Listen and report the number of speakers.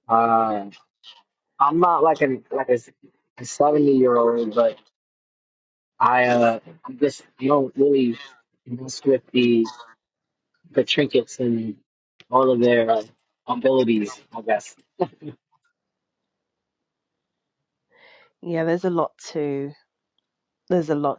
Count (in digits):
2